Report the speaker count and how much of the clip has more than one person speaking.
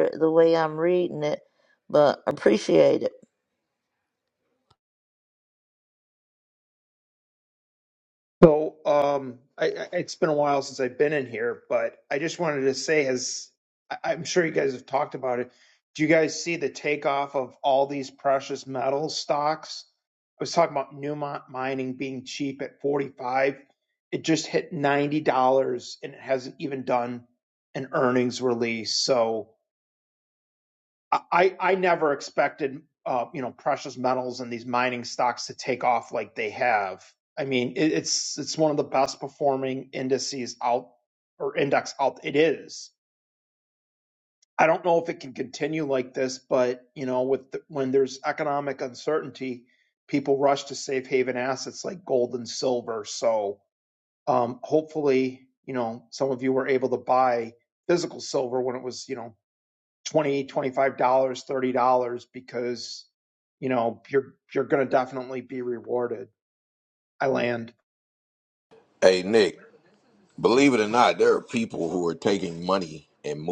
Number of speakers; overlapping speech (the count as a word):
three, no overlap